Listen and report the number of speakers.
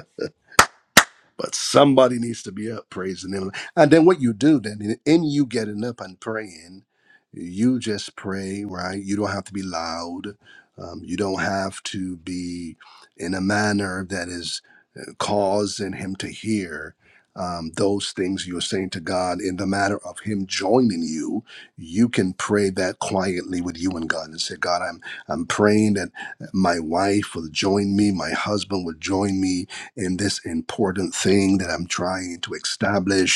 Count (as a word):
one